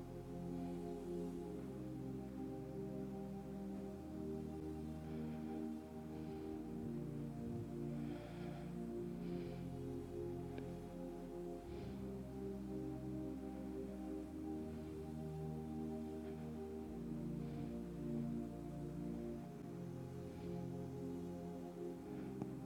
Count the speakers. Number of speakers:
zero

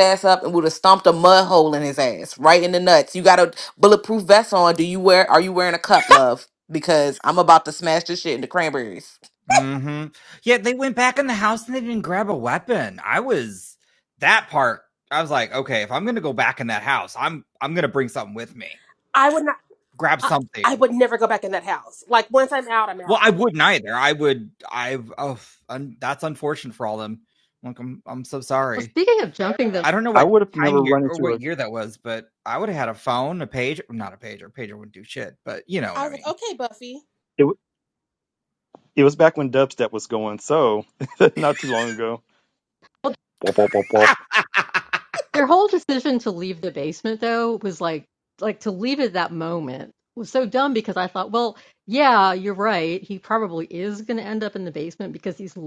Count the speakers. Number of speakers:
five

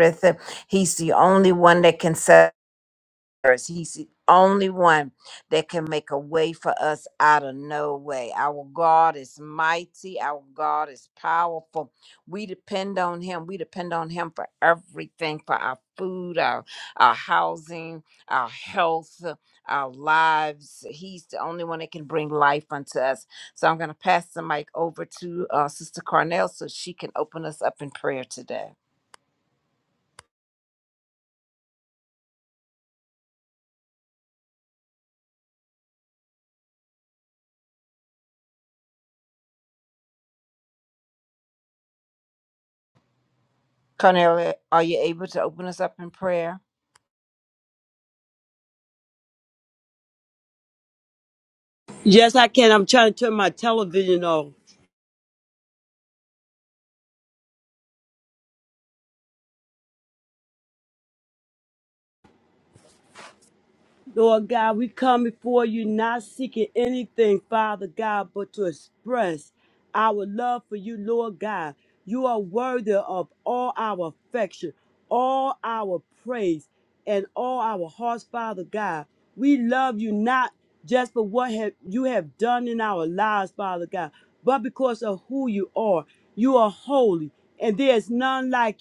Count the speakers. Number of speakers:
two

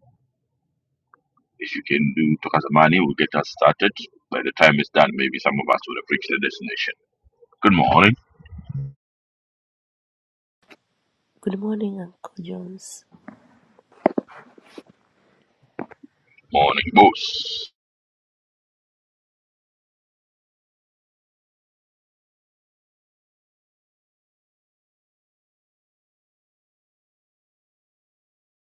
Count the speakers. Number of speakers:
two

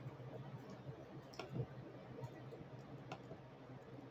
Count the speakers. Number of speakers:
zero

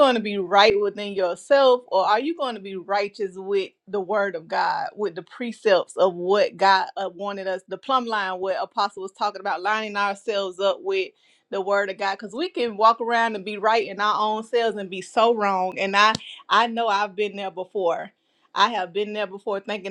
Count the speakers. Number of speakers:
one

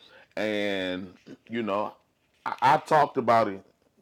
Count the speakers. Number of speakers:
one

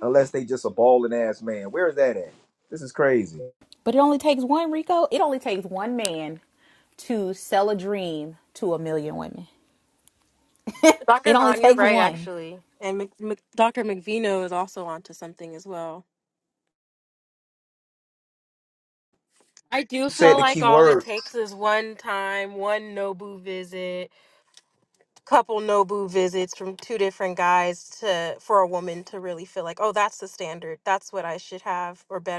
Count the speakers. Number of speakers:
three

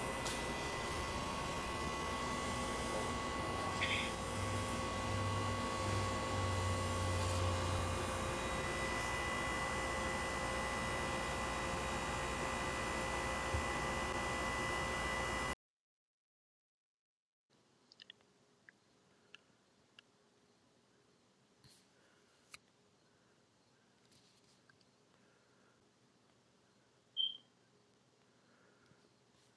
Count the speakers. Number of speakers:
zero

